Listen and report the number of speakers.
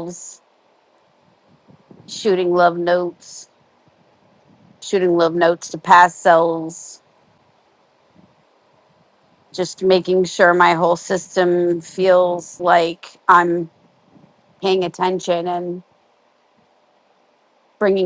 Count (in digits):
1